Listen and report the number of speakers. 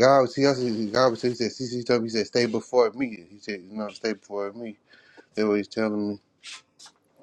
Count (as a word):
one